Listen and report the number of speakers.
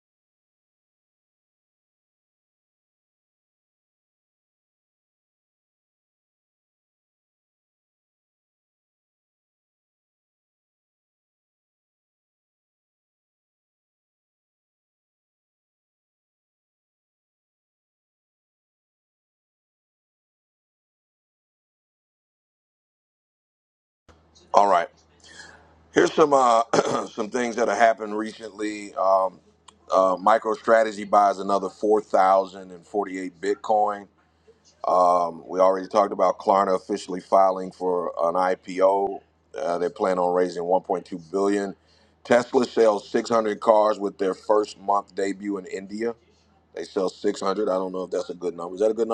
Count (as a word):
one